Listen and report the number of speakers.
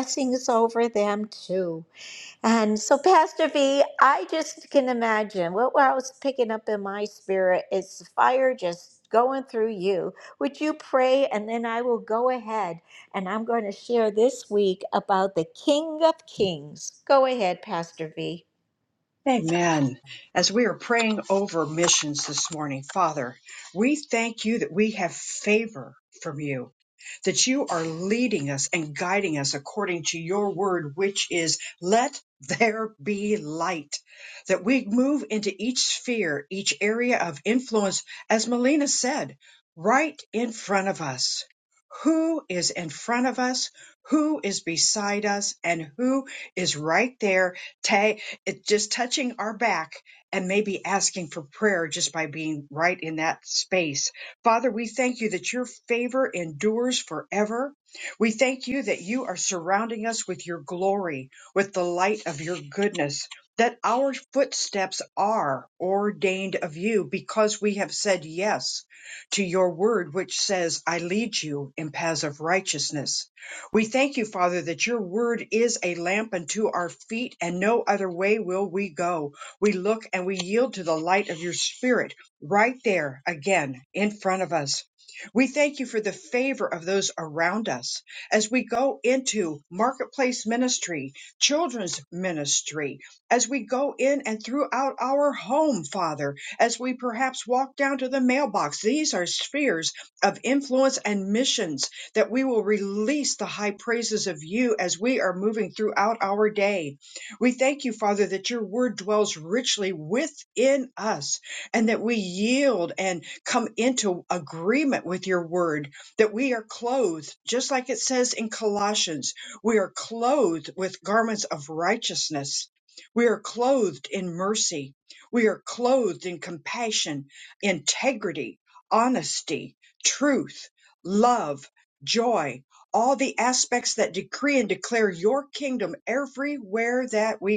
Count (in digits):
2